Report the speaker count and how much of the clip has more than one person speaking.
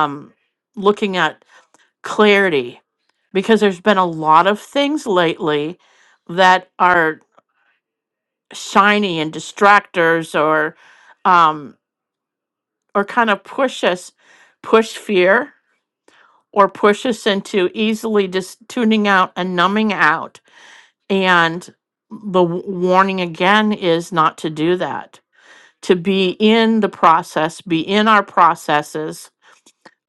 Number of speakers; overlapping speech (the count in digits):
1, no overlap